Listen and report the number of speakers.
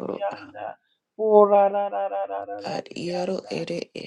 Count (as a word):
two